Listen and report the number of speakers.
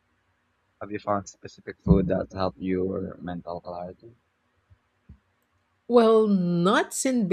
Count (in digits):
2